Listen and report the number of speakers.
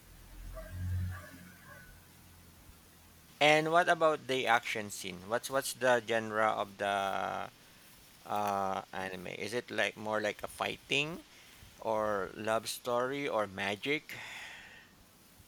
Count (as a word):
one